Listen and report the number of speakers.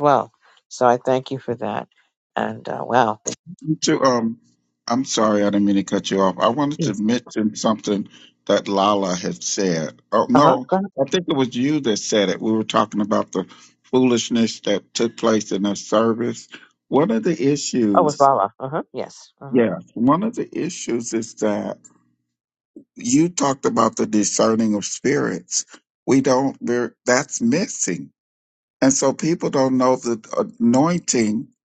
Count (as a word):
two